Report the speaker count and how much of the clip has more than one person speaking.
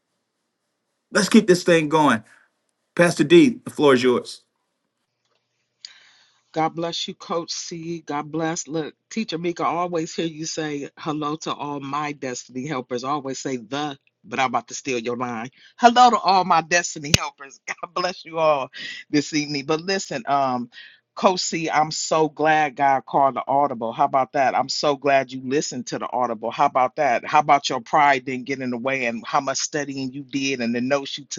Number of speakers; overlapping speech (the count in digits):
2, no overlap